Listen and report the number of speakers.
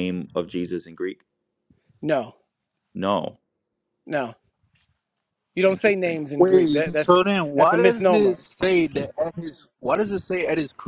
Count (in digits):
3